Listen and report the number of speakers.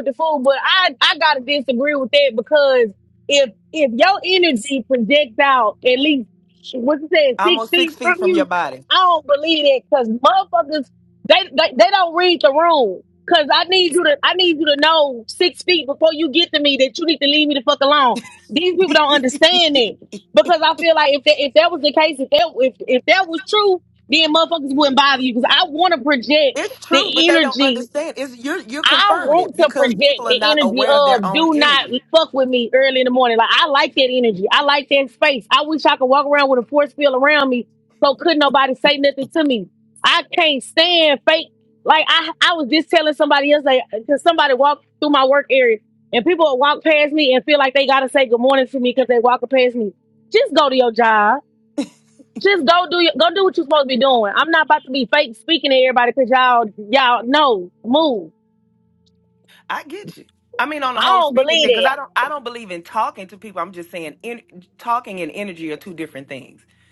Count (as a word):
two